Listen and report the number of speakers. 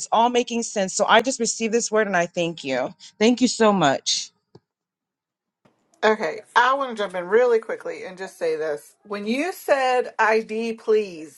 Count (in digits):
2